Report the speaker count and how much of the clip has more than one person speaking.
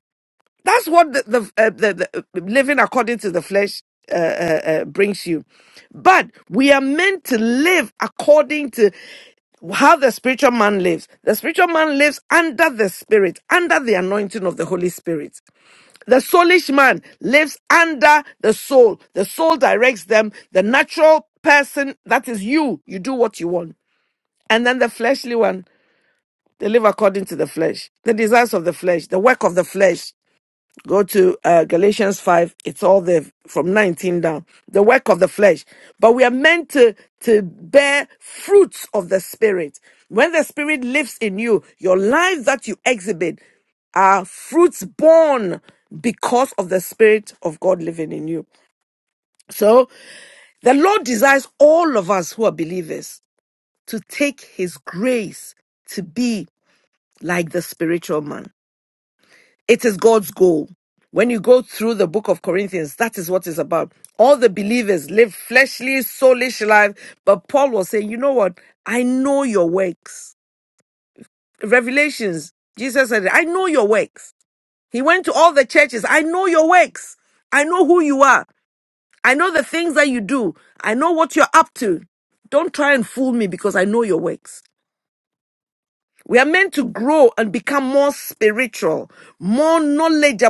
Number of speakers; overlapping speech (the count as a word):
one, no overlap